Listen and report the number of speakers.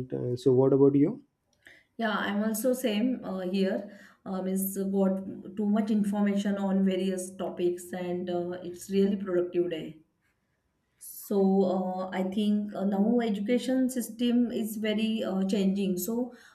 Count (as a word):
two